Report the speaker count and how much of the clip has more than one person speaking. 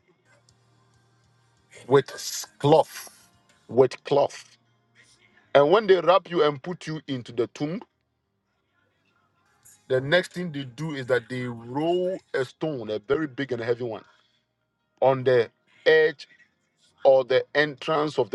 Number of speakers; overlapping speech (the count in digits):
1, no overlap